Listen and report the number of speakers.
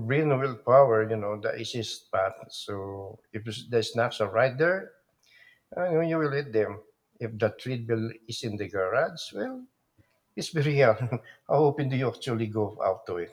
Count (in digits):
1